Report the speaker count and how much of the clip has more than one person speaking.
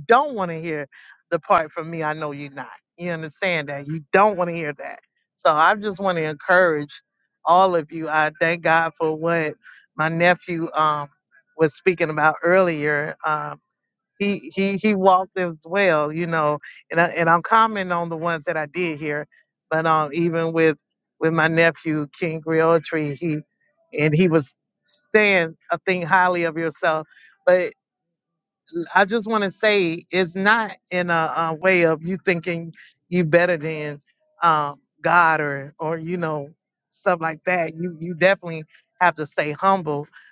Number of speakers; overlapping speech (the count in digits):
1, no overlap